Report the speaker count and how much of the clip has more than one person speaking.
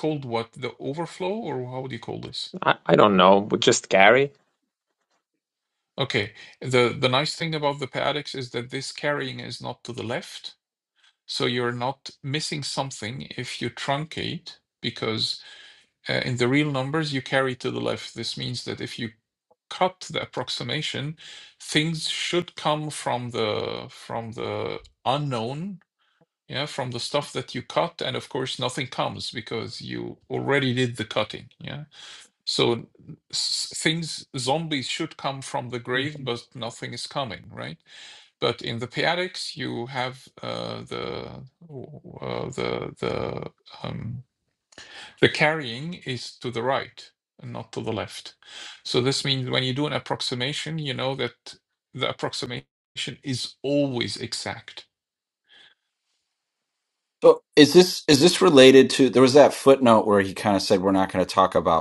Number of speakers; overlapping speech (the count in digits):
3, no overlap